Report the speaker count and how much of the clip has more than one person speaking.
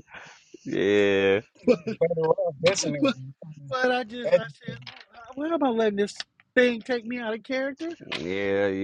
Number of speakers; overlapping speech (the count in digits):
3, about 4%